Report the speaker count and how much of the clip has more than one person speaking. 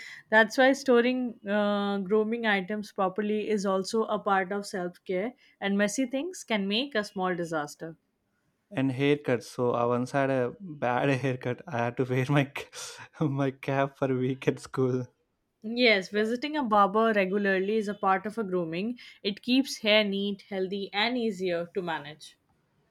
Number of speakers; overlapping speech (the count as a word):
two, no overlap